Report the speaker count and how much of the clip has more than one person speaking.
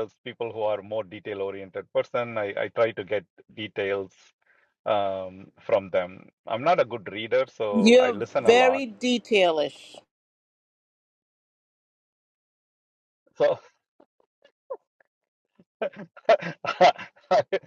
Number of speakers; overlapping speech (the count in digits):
2, about 6%